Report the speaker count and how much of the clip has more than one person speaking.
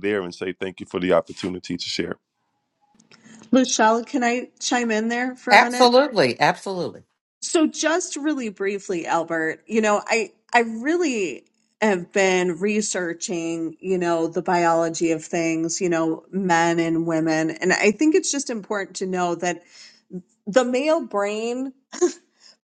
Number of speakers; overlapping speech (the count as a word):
three, about 2%